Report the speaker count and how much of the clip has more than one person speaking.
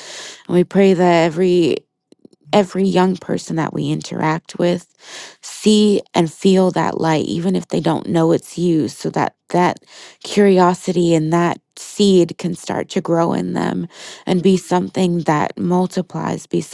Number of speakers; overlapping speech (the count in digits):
1, no overlap